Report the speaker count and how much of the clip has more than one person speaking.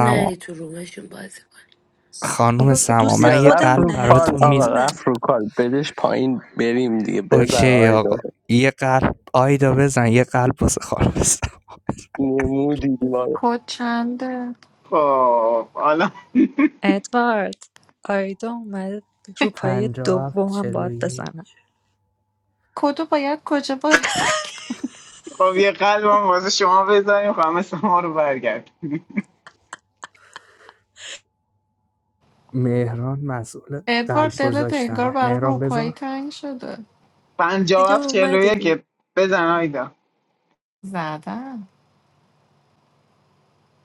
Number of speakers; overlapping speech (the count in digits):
6, about 19%